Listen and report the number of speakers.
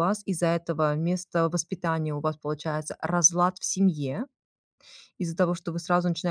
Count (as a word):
one